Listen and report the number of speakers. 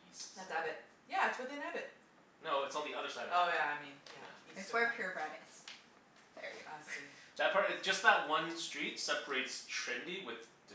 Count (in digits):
3